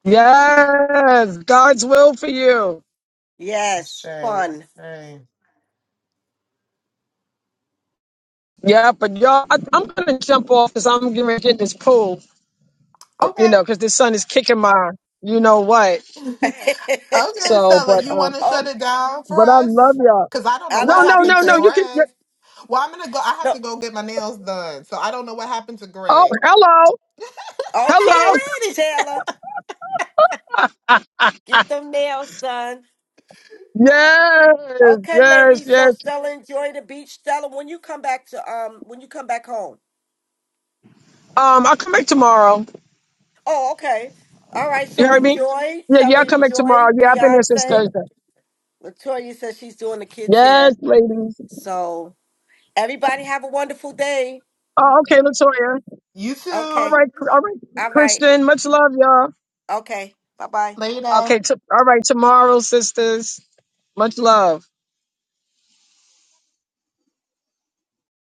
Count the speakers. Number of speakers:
3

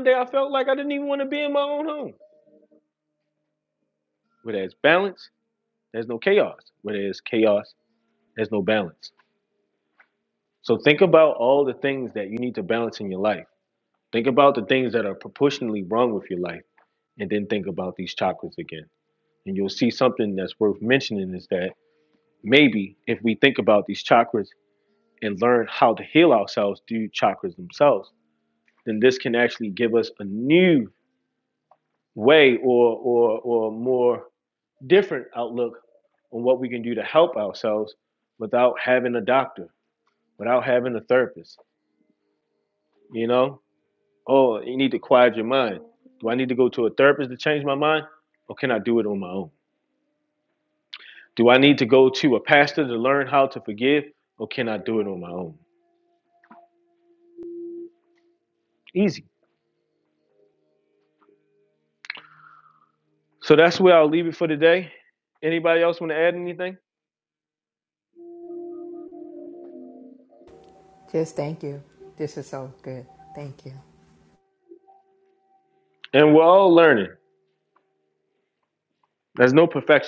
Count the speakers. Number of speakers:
2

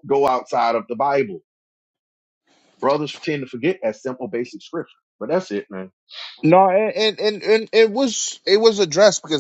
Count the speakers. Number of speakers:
2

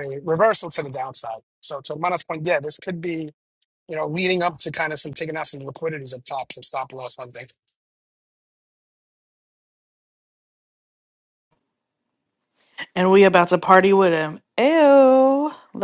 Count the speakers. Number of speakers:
2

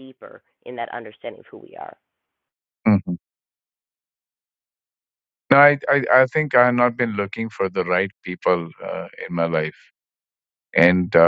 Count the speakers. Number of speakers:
2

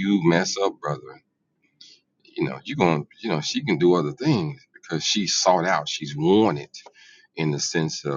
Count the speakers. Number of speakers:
1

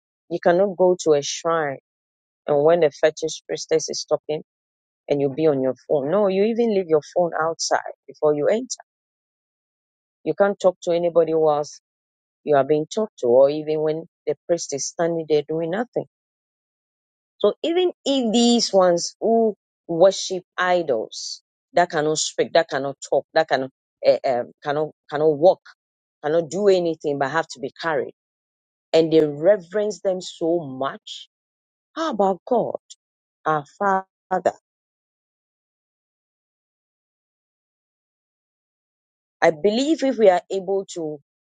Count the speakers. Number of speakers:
1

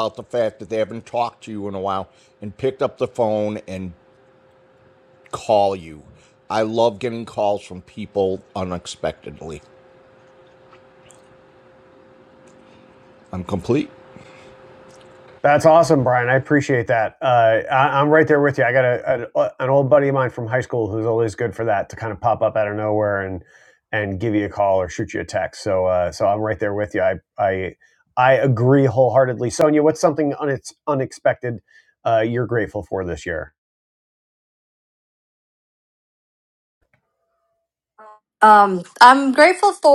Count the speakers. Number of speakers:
3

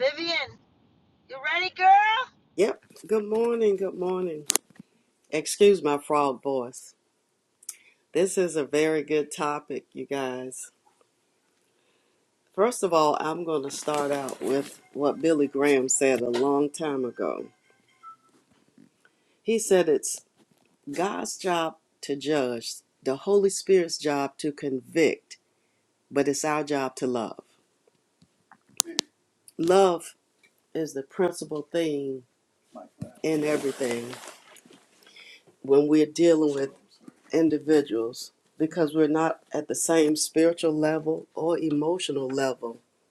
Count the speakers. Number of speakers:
2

